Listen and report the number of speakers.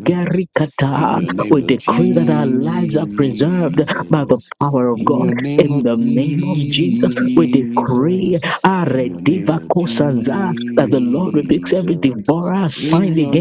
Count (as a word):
two